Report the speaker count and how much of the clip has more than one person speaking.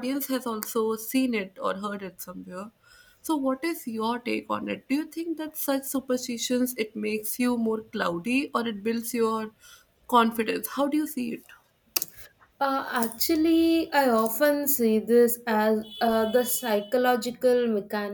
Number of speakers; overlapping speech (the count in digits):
2, no overlap